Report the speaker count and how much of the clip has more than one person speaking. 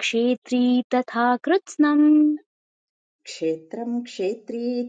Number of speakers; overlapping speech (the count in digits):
2, no overlap